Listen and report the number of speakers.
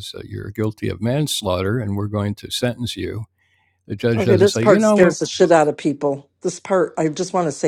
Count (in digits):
2